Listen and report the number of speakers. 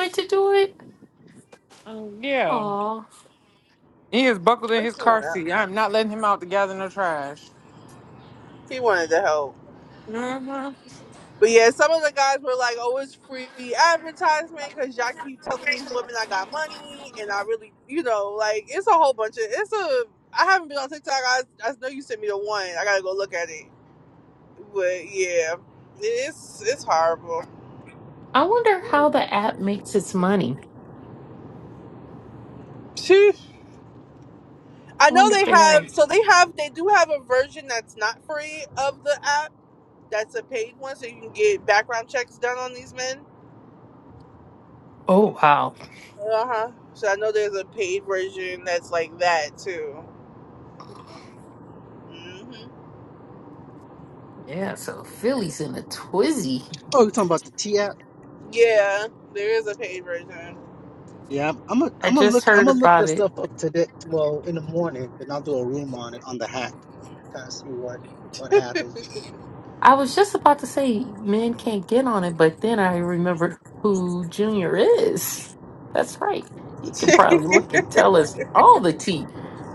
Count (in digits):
4